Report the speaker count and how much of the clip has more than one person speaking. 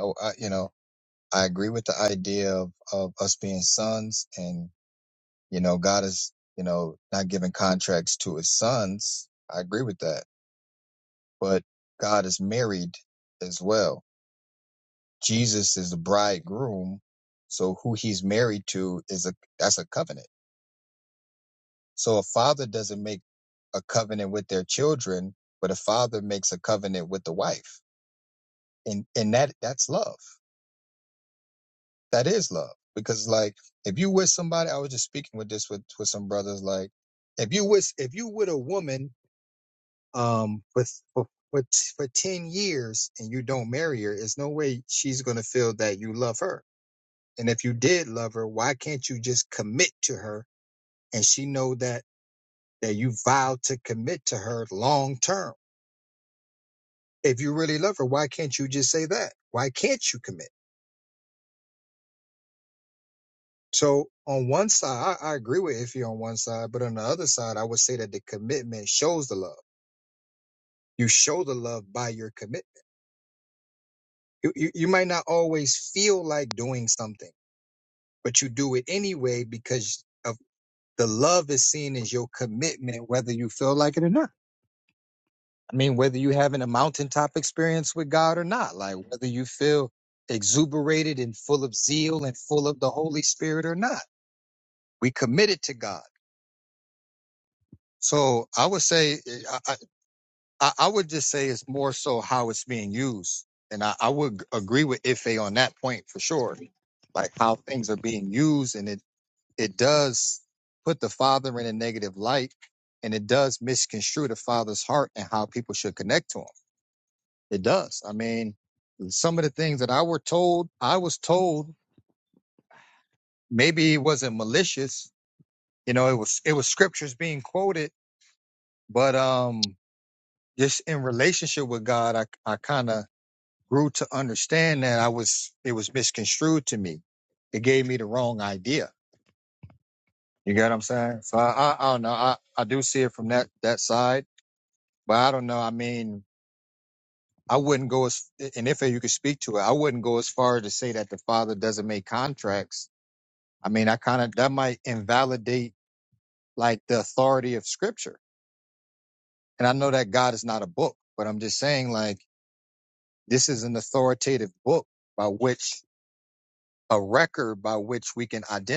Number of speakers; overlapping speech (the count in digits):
1, no overlap